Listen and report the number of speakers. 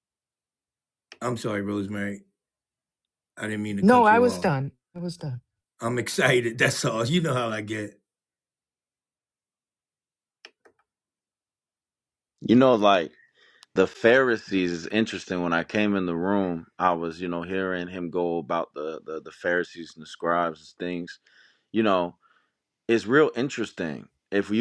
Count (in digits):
3